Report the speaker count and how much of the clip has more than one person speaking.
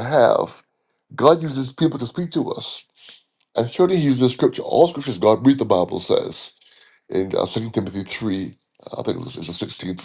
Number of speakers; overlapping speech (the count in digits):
1, no overlap